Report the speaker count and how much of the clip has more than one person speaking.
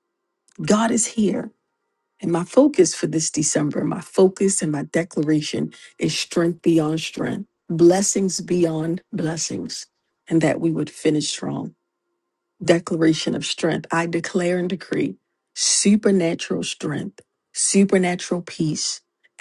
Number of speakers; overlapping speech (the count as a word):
one, no overlap